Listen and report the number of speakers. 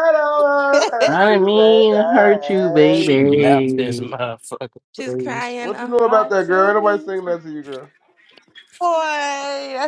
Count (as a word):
four